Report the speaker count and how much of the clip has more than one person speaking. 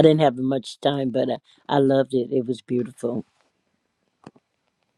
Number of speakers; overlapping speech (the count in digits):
1, no overlap